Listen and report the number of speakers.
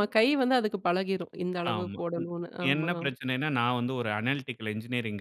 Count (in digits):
2